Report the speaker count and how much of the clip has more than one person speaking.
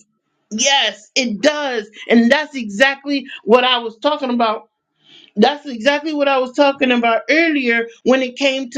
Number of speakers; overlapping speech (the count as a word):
one, no overlap